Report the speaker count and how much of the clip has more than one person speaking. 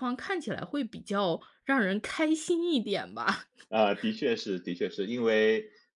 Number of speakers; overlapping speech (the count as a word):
two, no overlap